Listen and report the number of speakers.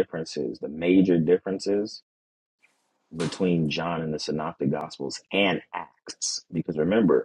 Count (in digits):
1